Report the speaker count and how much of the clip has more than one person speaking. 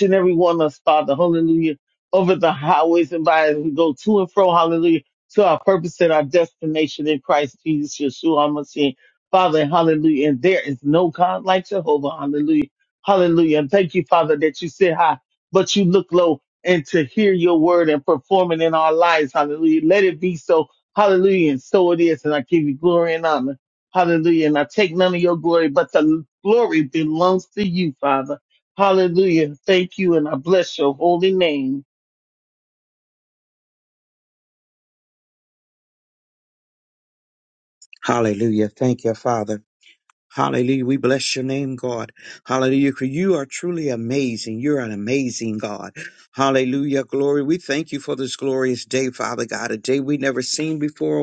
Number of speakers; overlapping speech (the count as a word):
two, no overlap